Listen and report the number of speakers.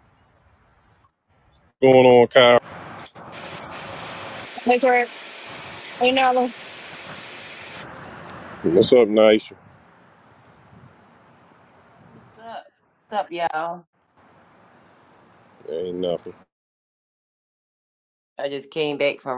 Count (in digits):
3